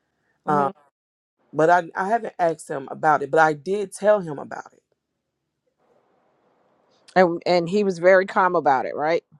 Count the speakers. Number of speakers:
two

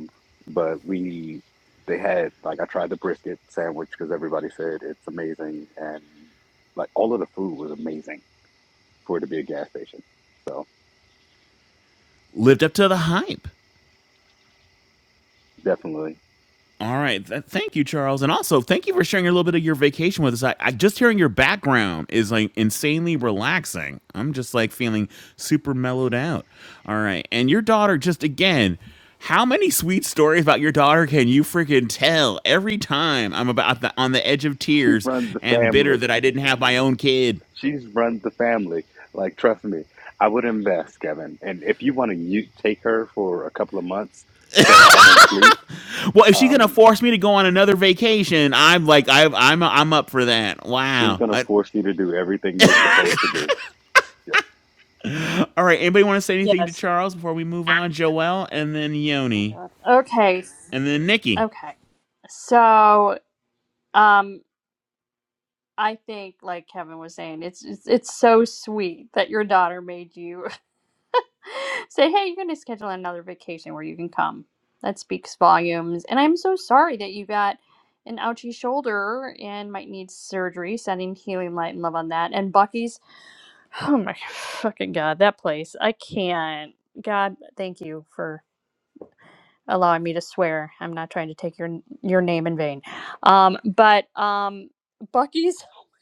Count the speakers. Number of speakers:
three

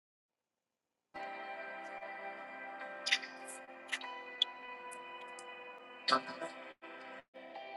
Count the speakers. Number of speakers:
zero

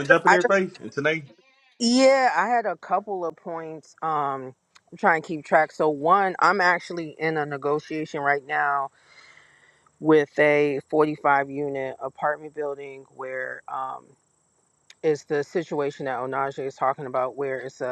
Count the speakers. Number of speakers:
two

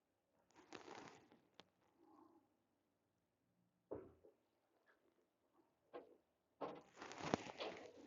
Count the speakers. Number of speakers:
zero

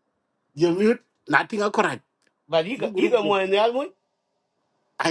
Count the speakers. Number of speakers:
two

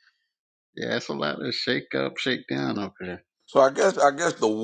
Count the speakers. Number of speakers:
two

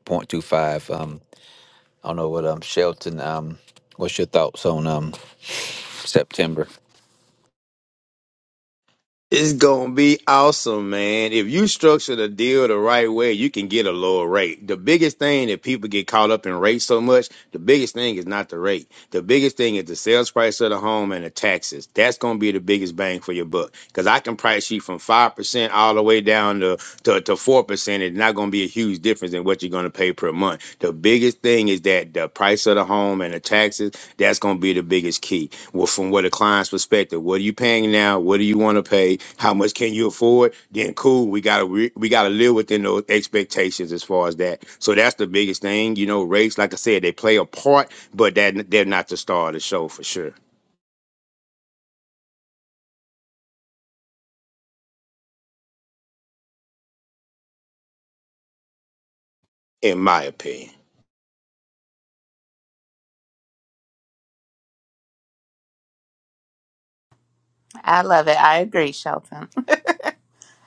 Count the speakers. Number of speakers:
three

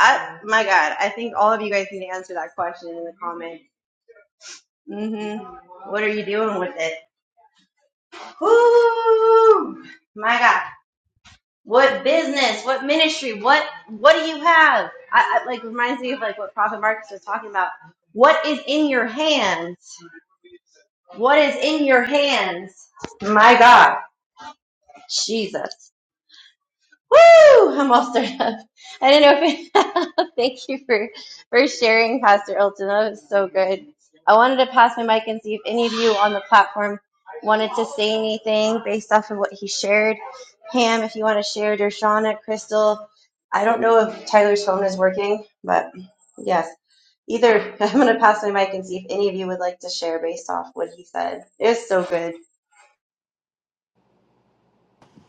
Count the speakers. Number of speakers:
one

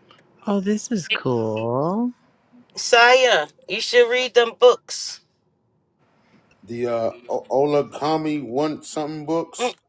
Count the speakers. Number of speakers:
three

